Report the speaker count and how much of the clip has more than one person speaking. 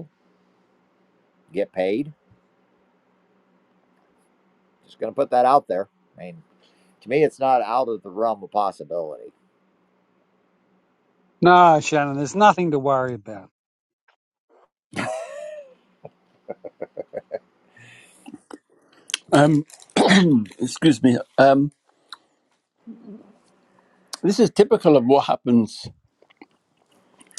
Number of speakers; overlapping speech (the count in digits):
3, no overlap